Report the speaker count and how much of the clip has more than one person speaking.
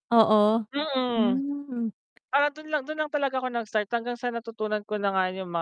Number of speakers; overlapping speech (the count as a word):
two, about 4%